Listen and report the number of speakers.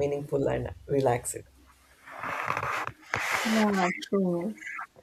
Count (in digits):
2